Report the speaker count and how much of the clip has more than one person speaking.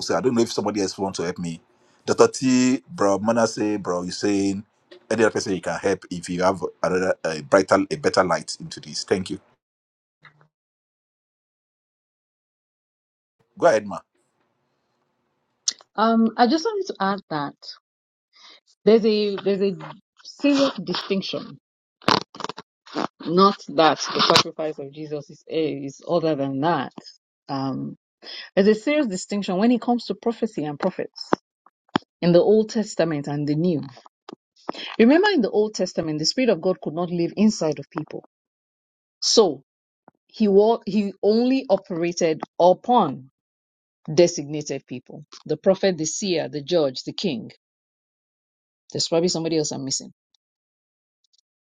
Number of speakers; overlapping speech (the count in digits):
2, no overlap